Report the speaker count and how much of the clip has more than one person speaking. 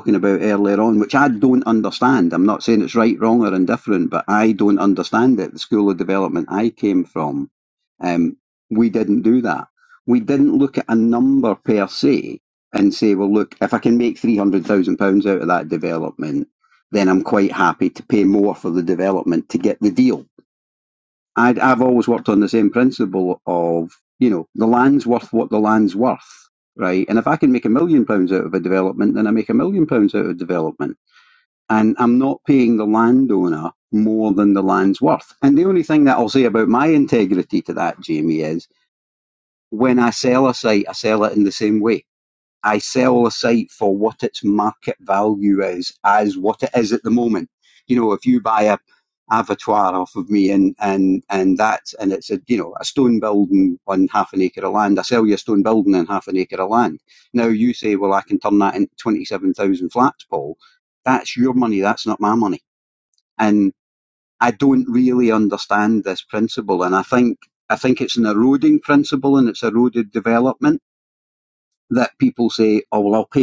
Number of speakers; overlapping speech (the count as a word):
one, no overlap